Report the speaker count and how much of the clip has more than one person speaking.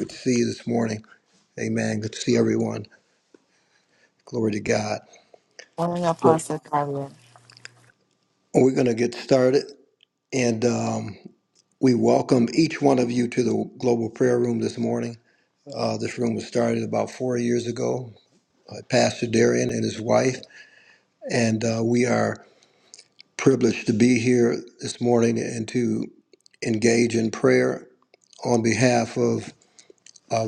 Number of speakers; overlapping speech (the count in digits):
2, about 1%